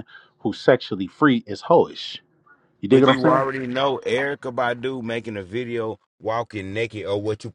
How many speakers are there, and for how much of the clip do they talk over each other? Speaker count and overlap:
two, about 7%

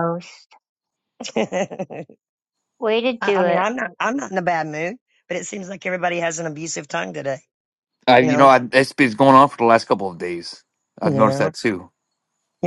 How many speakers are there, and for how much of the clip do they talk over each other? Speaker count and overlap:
three, about 10%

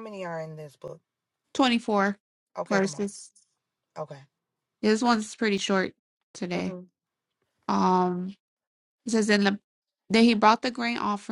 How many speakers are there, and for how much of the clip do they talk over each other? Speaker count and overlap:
two, about 4%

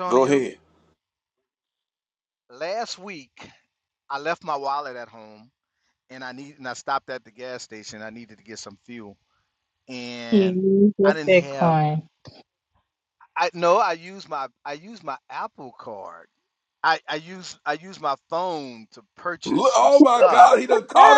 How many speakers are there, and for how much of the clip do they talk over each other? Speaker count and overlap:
three, about 12%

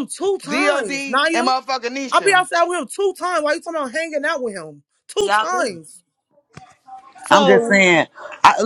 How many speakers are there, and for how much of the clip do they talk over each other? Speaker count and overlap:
three, about 21%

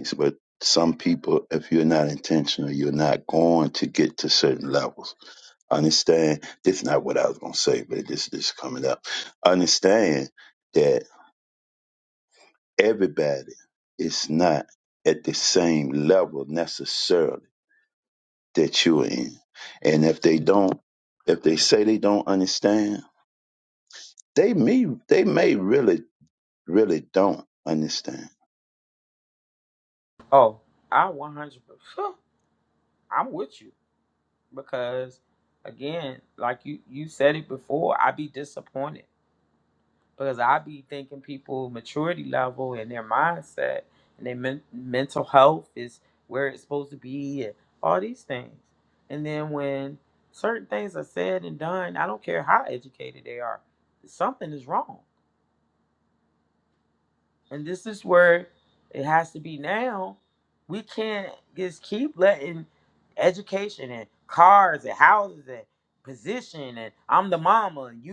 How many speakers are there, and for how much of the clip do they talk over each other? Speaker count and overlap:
two, no overlap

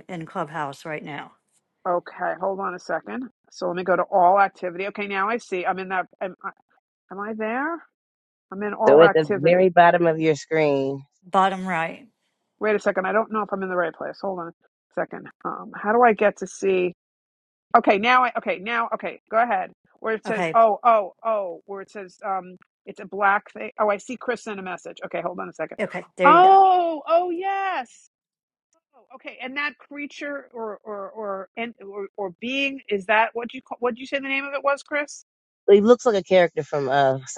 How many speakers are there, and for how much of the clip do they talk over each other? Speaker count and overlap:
three, about 4%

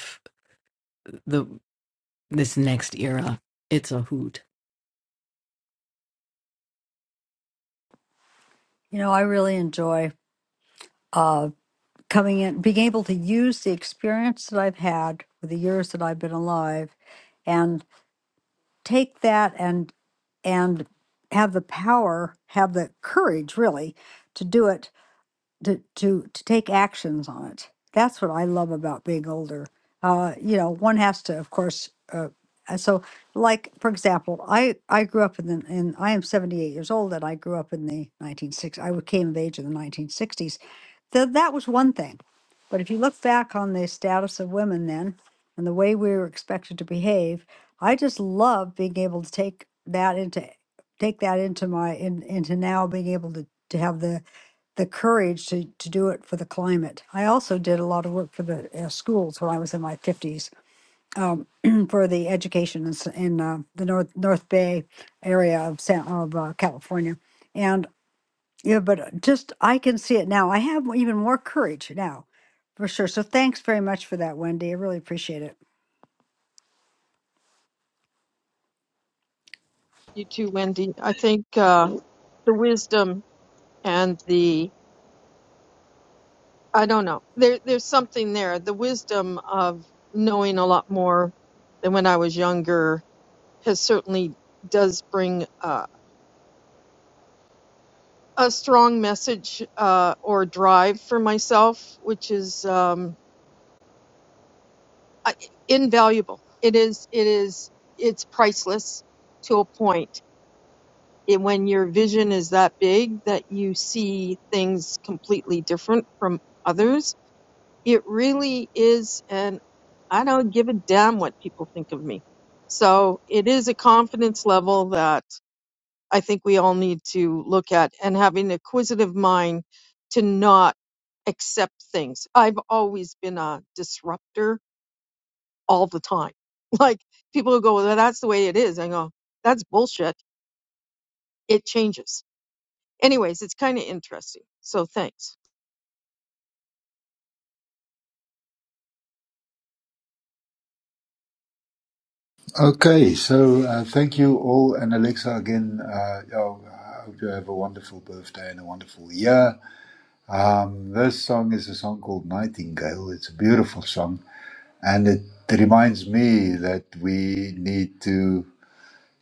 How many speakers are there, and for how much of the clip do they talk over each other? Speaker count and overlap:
four, no overlap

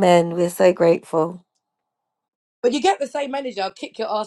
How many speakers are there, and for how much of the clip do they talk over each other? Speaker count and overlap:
two, no overlap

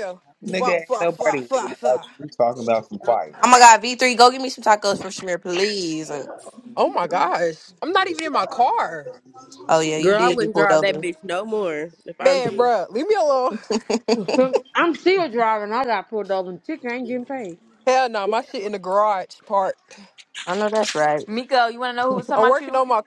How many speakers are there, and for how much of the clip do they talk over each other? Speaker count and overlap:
six, about 15%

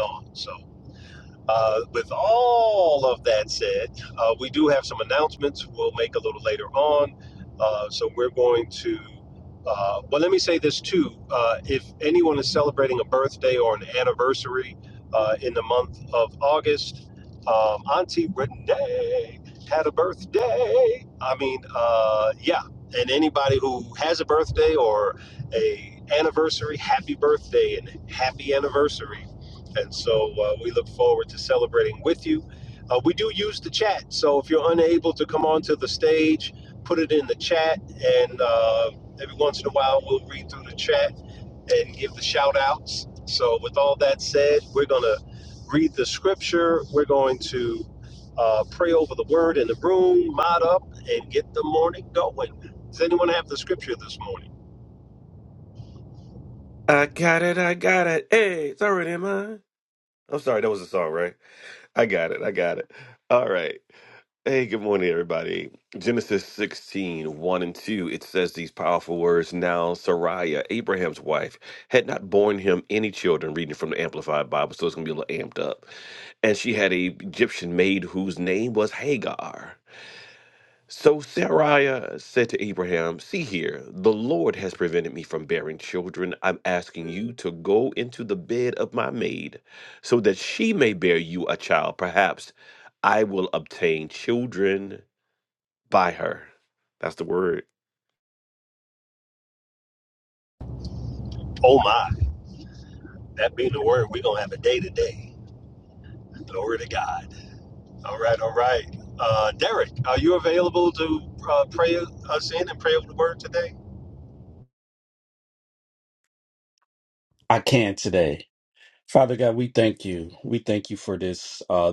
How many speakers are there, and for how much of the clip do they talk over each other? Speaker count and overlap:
three, no overlap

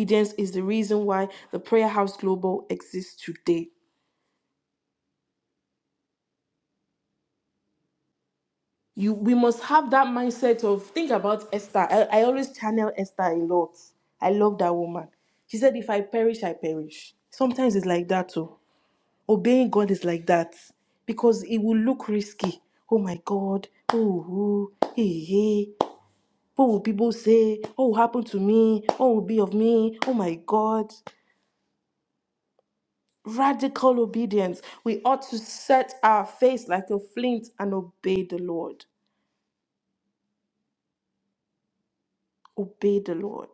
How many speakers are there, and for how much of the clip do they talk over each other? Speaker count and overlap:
one, no overlap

